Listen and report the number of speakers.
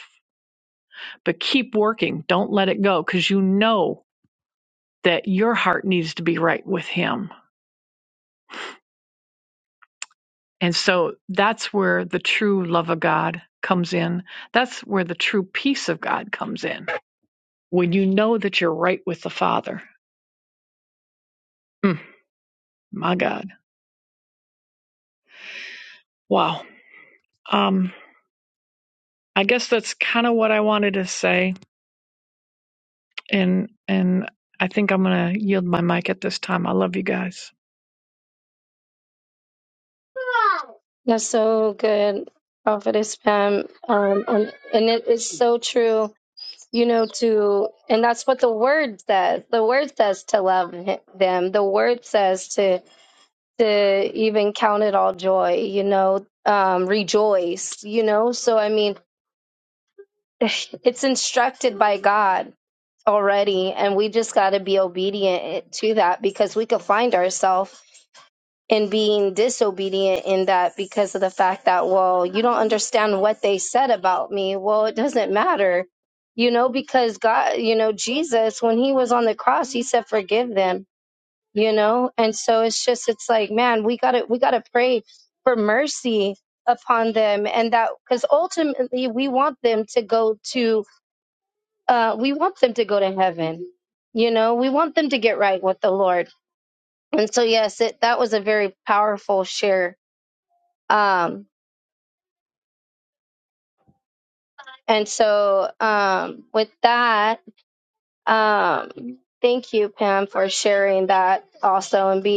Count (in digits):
2